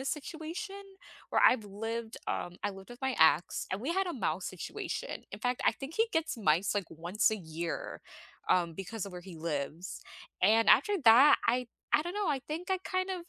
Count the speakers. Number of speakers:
one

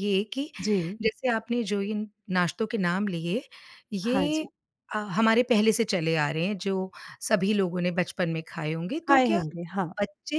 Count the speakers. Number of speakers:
two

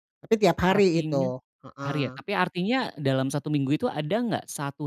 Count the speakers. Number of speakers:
two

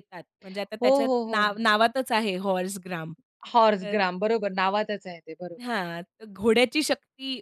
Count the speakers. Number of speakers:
two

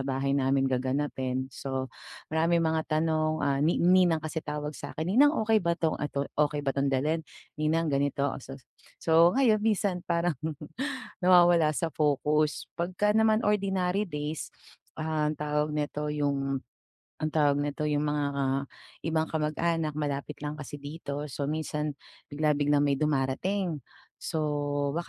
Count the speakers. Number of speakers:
one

